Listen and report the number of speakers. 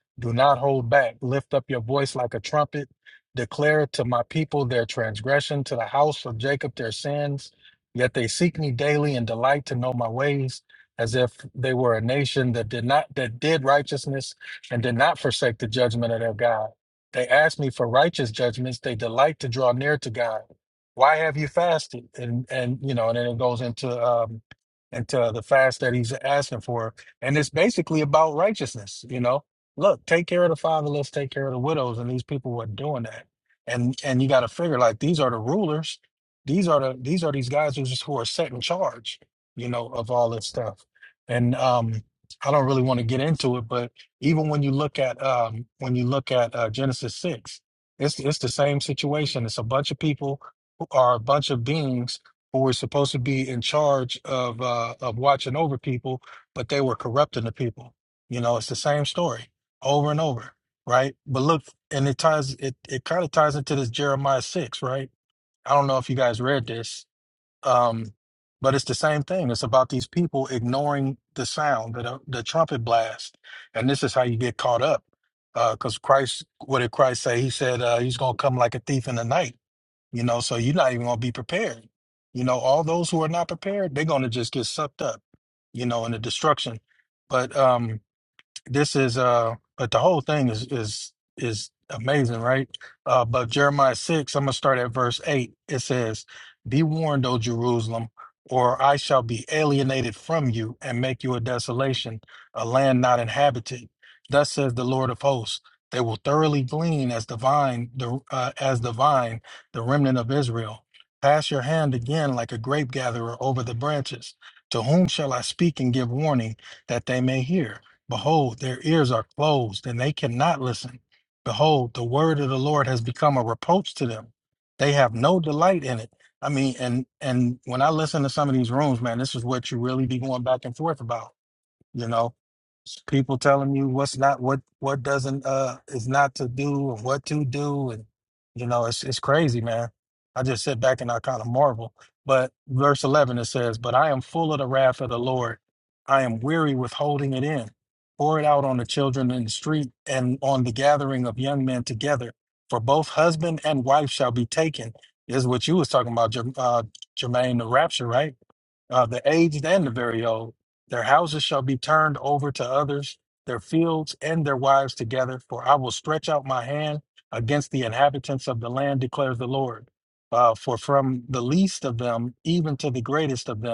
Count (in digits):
1